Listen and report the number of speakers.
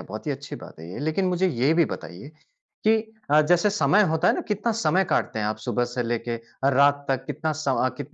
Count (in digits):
1